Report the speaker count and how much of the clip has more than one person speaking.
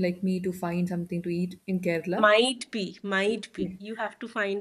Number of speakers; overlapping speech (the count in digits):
2, about 13%